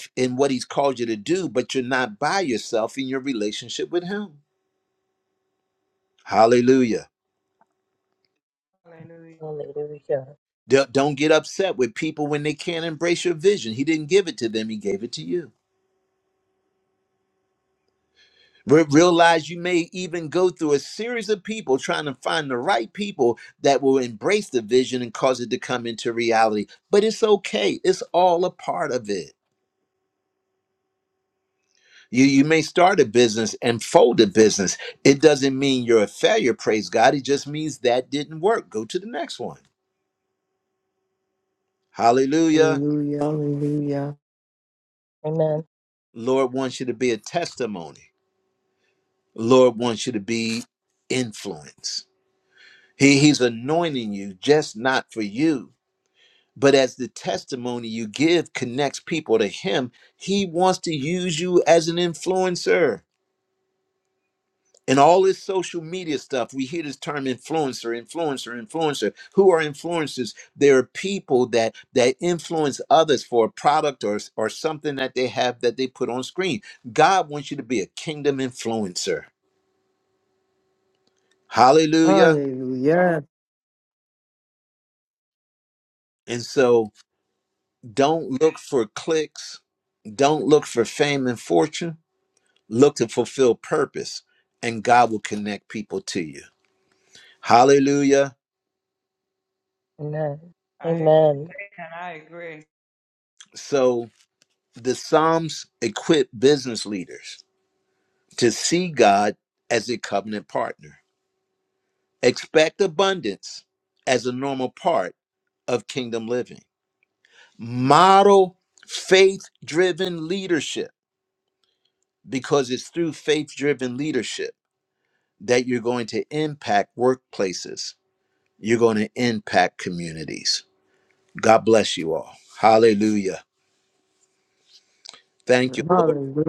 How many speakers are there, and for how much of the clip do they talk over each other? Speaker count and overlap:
4, about 1%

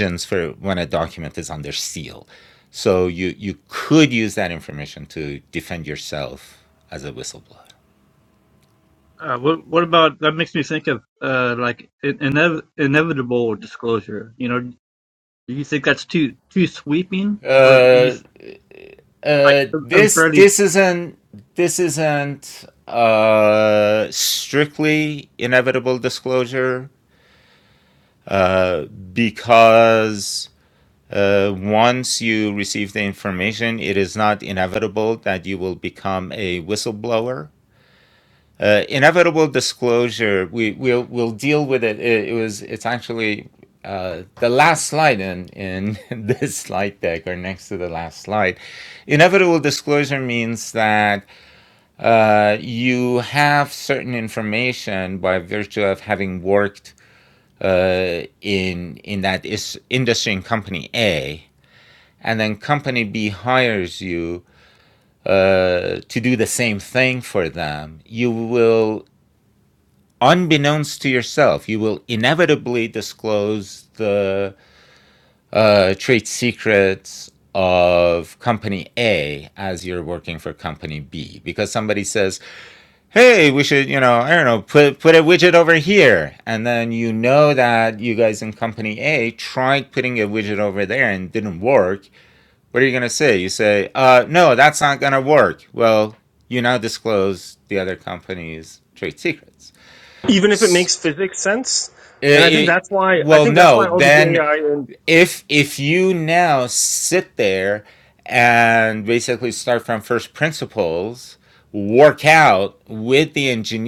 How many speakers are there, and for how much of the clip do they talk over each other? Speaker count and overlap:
3, about 3%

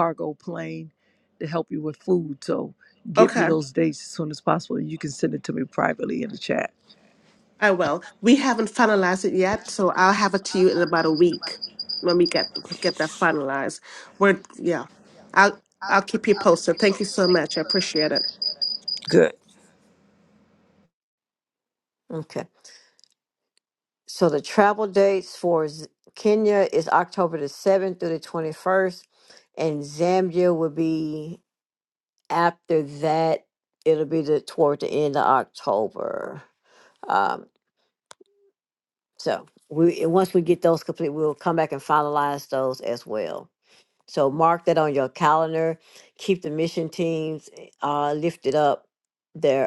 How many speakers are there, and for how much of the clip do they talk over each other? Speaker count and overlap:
3, about 1%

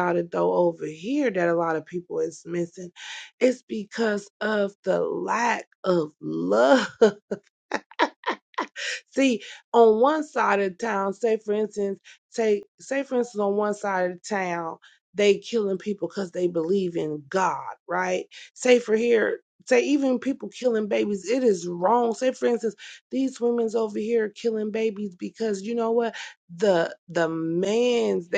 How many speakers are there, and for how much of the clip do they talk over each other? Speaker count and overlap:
1, no overlap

